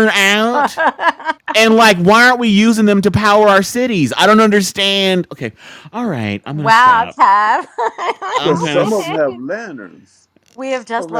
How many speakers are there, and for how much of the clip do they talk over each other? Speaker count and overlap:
three, about 11%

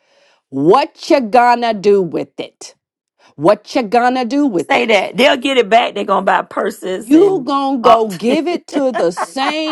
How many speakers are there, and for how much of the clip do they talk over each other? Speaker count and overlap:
two, about 7%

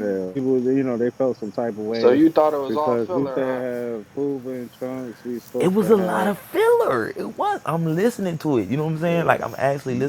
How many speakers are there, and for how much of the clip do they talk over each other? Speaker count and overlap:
three, about 23%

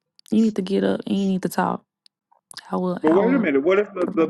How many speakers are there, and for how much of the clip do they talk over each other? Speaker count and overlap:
two, about 17%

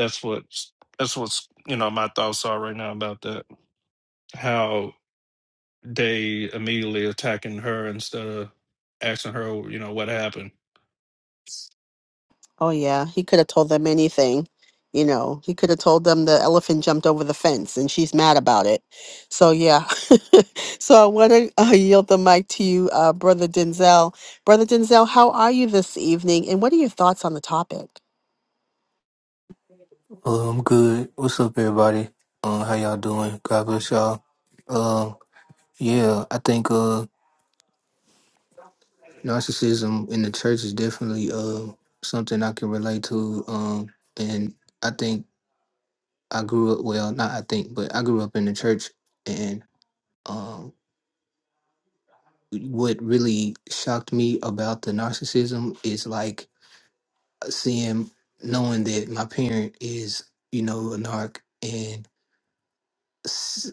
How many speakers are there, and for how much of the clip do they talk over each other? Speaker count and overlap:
three, no overlap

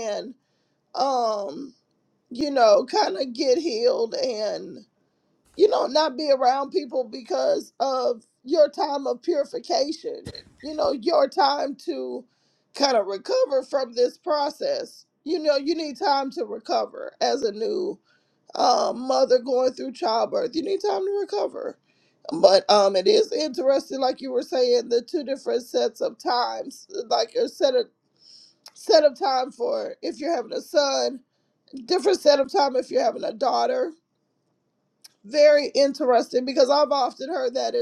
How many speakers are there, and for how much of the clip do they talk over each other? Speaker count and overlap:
one, no overlap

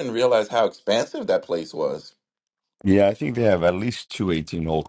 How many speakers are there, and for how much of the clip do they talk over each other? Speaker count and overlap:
two, no overlap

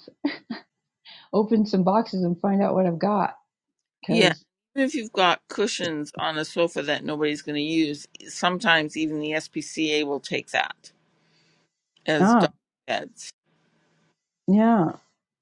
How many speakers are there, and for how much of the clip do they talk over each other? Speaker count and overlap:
two, about 4%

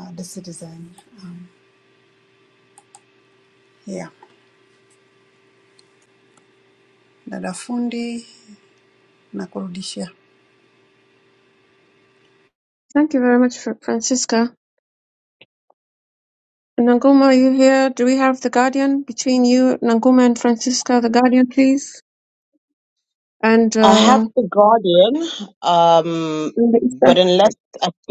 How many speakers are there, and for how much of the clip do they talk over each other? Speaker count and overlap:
three, about 3%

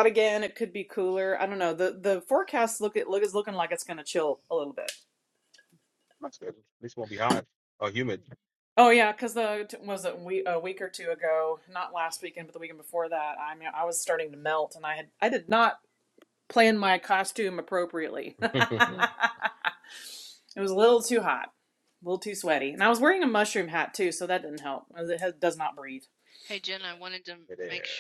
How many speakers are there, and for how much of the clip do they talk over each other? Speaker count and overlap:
three, about 2%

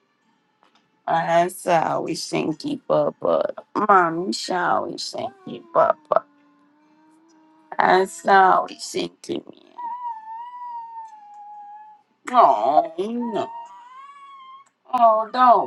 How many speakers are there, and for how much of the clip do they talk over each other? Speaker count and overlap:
one, no overlap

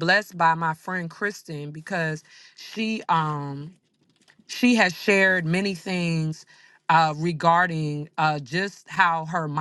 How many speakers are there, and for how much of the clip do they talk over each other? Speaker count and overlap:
one, no overlap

